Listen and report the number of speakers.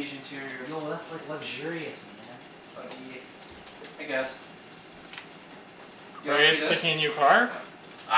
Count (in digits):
3